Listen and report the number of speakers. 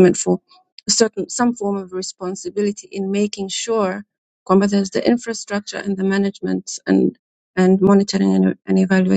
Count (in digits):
1